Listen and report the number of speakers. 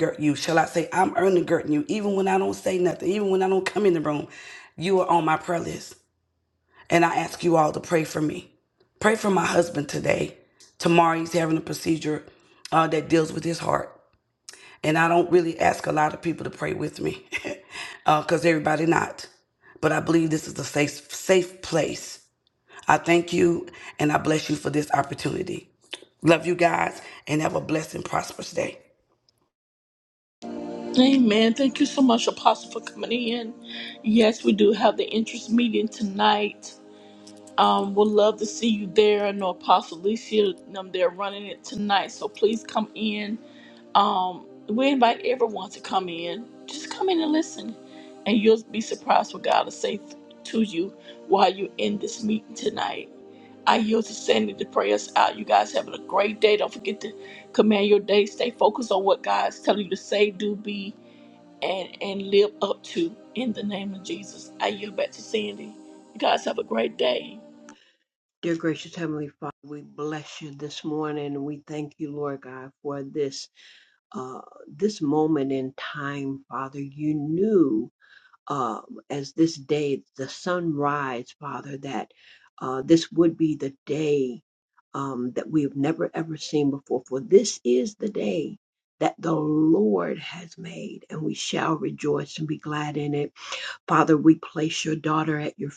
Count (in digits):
3